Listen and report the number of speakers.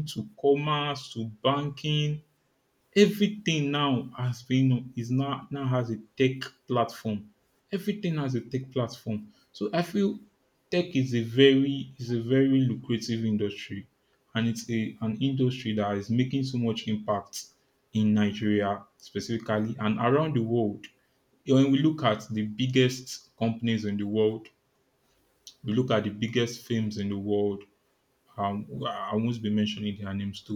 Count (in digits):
1